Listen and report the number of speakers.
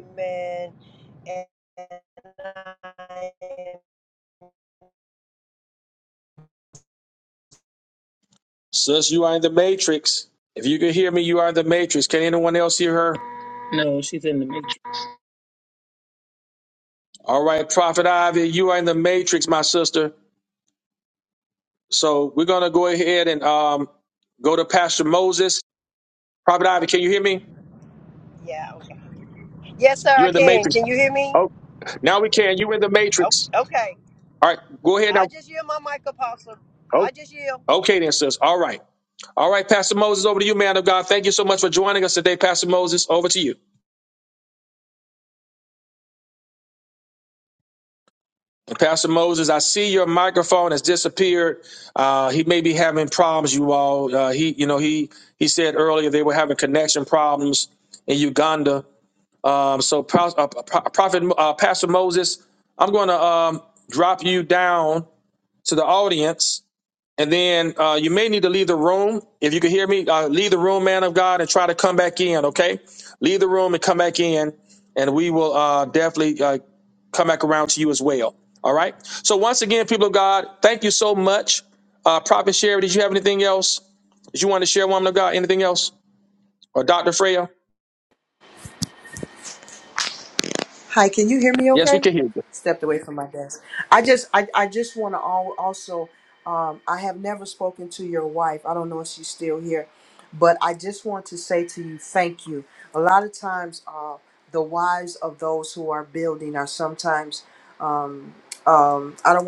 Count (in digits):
4